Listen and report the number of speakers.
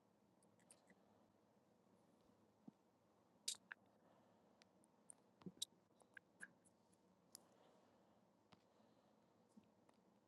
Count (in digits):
0